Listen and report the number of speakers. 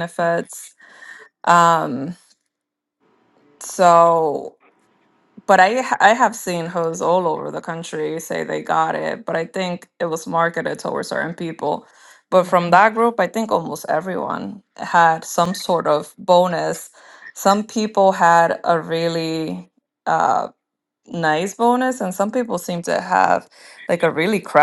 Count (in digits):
1